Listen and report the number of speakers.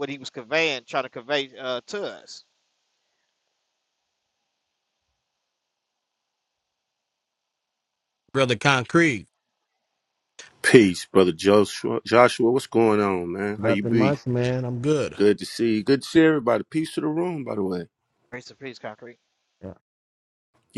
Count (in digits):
3